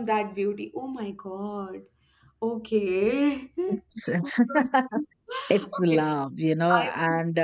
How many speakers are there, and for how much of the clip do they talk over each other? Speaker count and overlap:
two, about 16%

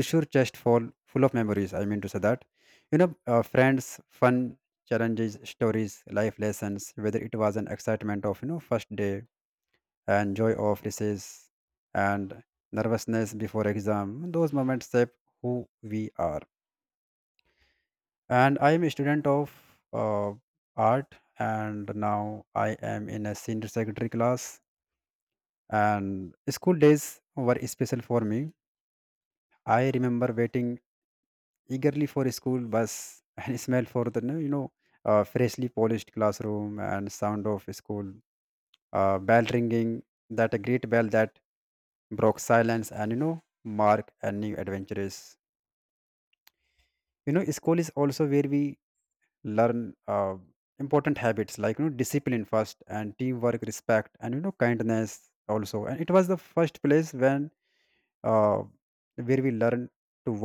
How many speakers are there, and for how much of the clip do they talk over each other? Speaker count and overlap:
one, no overlap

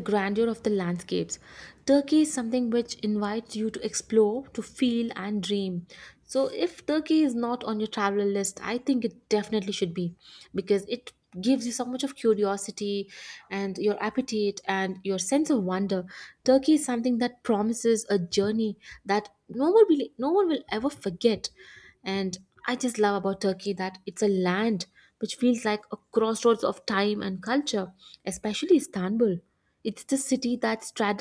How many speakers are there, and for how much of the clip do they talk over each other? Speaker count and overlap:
one, no overlap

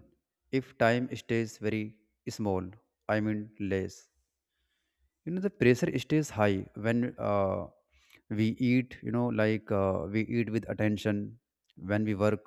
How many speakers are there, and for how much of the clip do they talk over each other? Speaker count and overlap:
one, no overlap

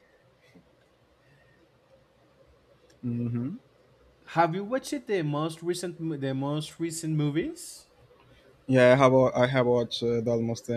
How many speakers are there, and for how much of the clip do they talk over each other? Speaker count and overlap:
two, no overlap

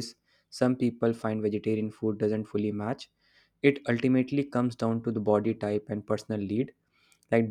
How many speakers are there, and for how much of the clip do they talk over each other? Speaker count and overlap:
one, no overlap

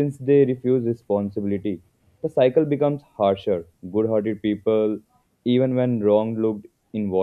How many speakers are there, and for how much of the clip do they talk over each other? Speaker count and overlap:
one, no overlap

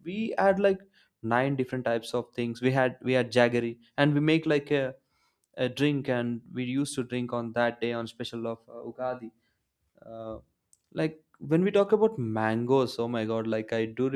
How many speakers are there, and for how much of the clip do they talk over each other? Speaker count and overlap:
one, no overlap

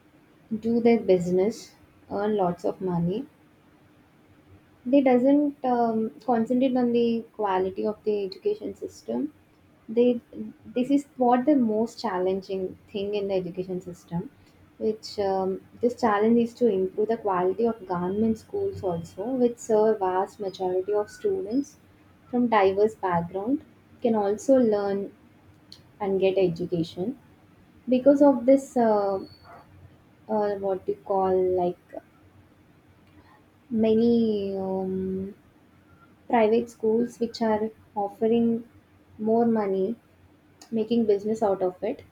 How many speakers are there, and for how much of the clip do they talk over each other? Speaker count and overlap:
one, no overlap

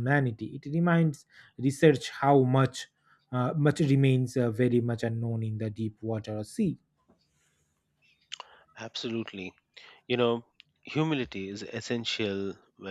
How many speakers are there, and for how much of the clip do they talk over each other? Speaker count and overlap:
two, no overlap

